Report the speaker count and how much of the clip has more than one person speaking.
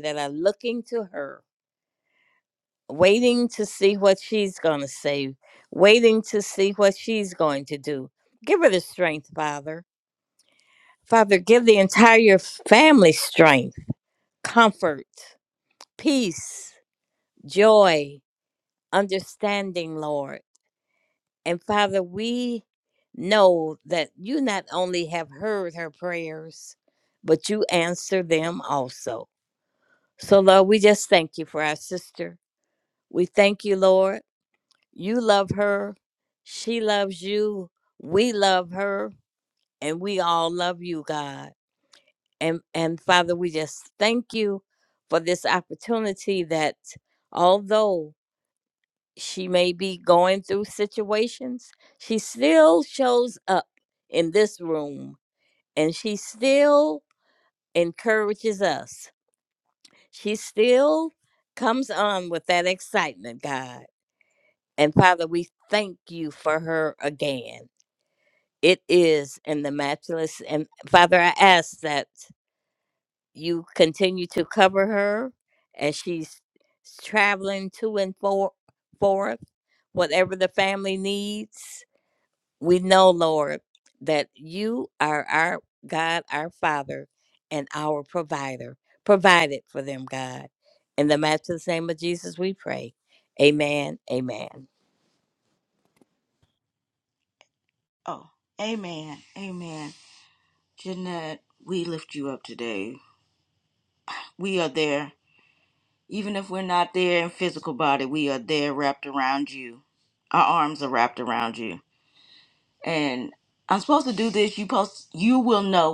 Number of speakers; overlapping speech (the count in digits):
2, no overlap